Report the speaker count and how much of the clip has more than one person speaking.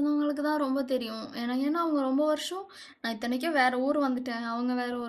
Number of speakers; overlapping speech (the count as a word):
one, no overlap